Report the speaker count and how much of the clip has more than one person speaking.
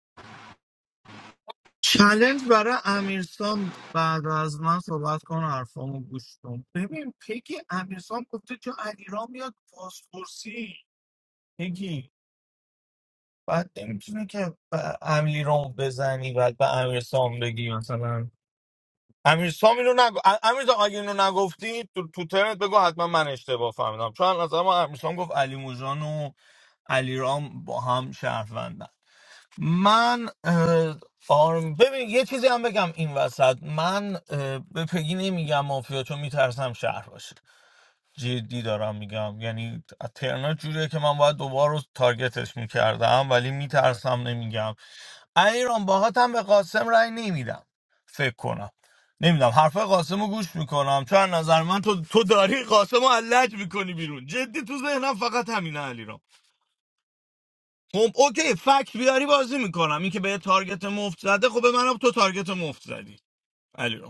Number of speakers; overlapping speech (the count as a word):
one, no overlap